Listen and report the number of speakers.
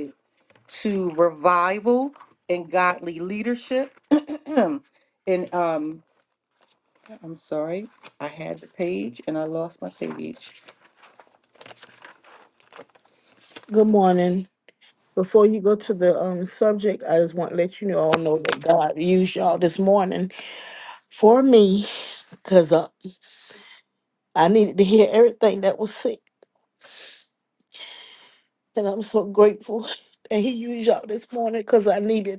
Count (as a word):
two